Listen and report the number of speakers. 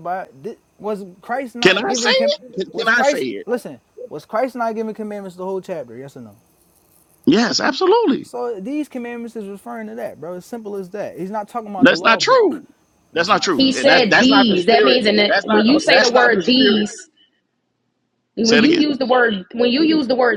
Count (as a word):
three